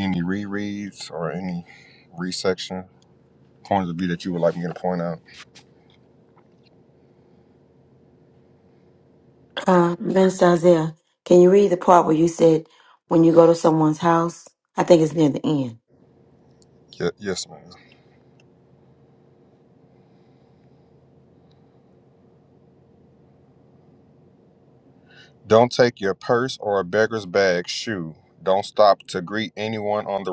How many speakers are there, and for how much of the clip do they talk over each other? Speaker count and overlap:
2, no overlap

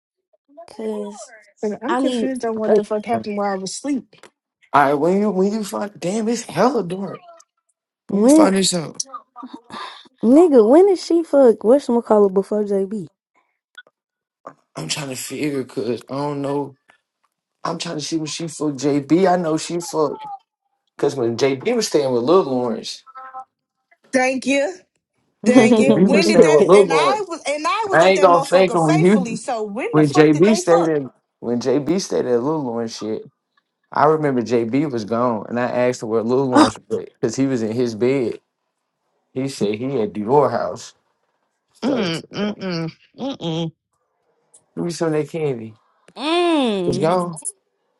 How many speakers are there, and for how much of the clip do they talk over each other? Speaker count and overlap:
3, about 12%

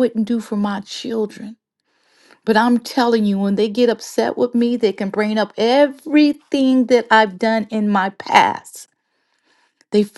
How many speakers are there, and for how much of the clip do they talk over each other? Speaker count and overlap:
1, no overlap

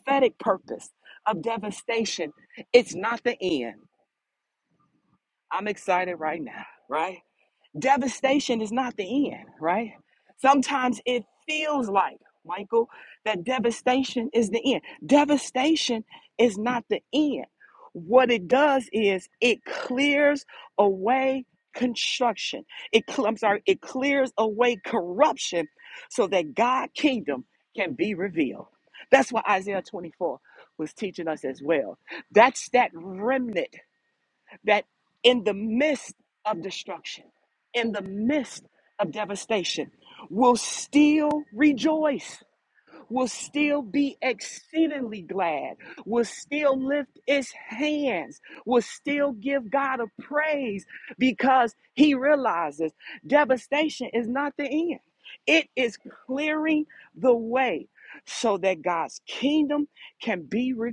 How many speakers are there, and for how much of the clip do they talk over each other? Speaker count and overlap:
1, no overlap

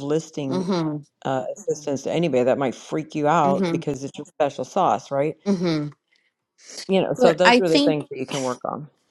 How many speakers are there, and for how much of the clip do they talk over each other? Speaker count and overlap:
2, about 15%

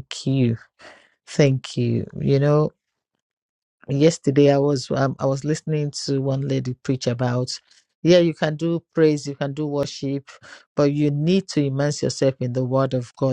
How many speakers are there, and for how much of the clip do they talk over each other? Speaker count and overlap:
1, no overlap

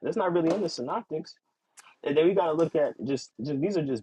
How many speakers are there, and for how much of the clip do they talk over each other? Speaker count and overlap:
1, no overlap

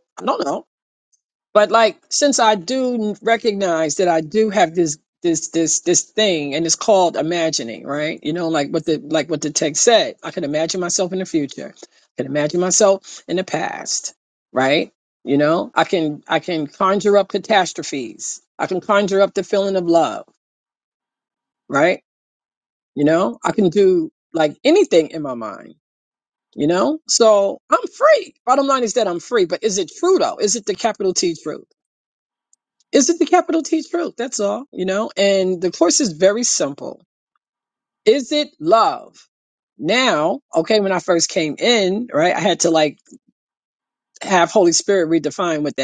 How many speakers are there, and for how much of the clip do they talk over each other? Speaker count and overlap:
1, no overlap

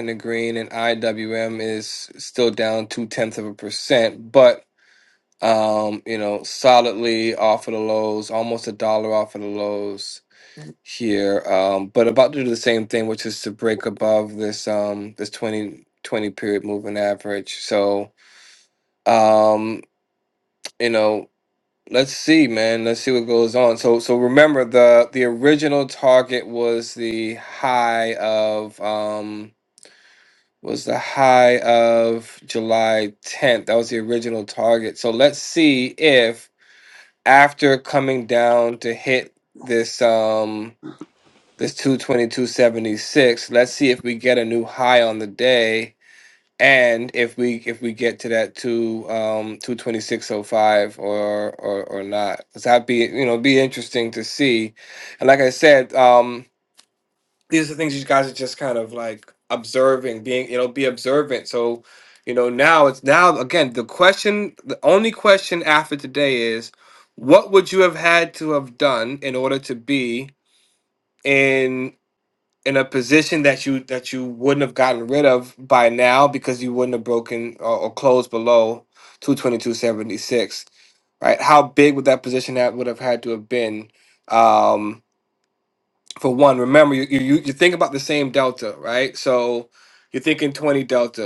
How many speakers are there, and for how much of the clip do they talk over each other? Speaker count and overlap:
1, no overlap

